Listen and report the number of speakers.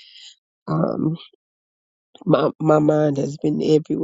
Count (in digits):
1